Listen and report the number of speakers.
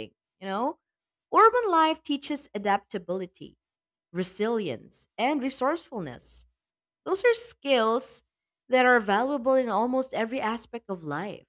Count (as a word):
one